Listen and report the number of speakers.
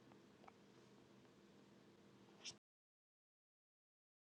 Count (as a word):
zero